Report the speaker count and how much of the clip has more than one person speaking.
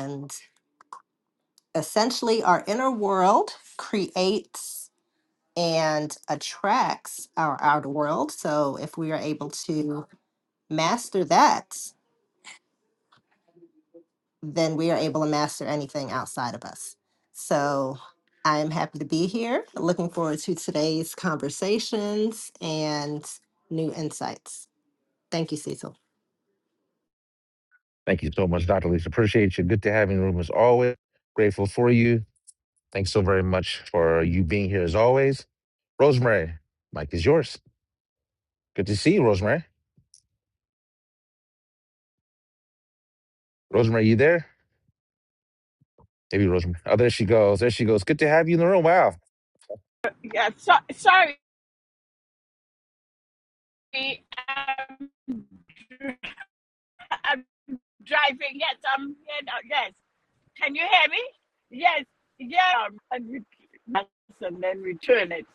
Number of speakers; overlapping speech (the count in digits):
3, no overlap